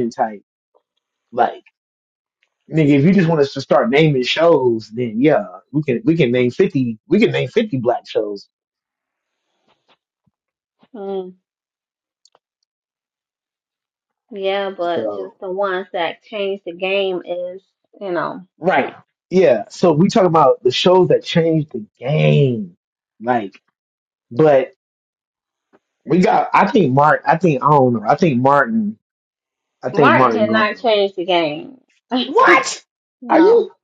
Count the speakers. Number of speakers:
2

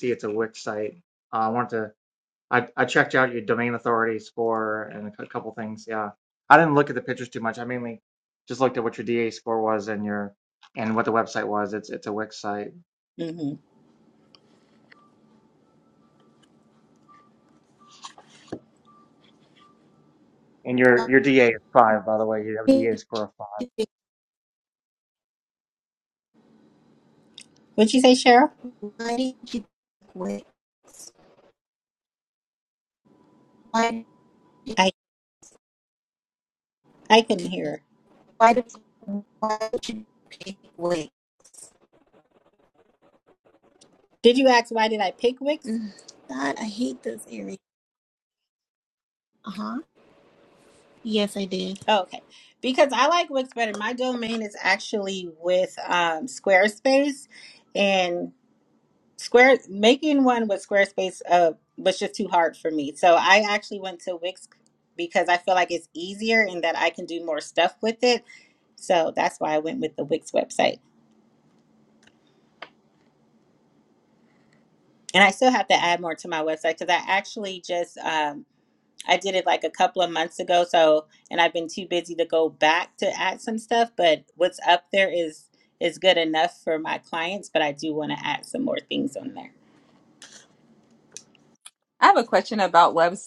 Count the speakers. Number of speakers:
4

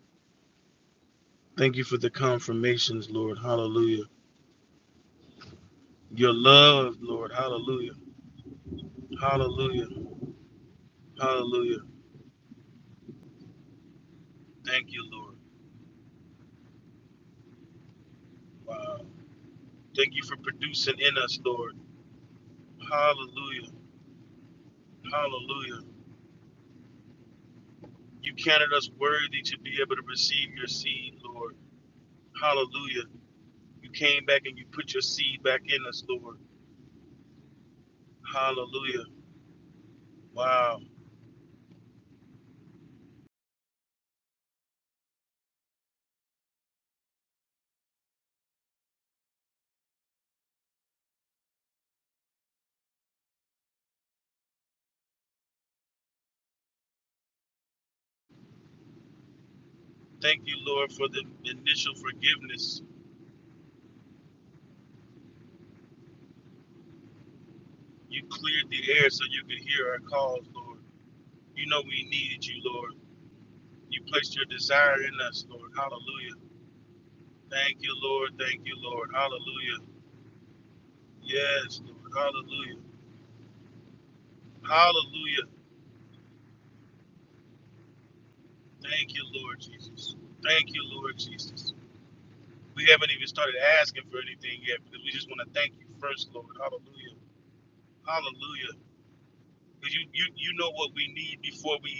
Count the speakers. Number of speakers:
1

